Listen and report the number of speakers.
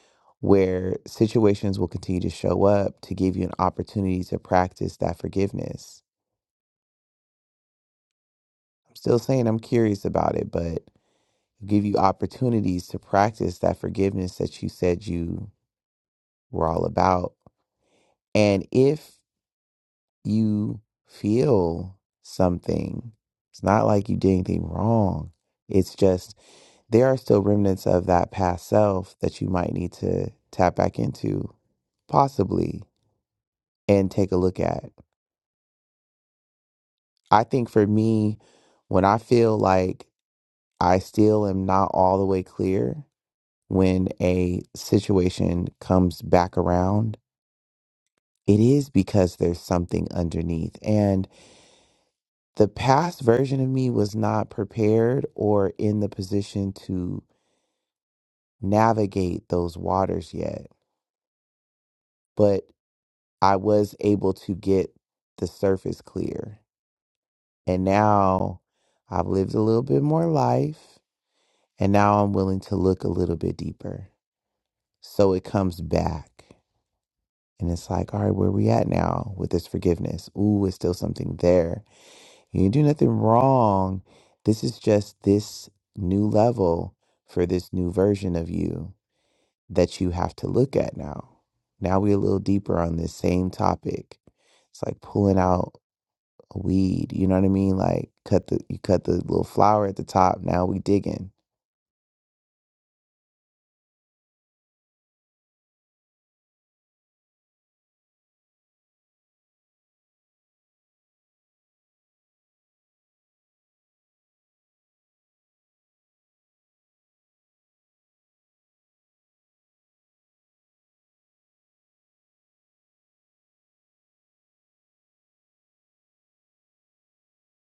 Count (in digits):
1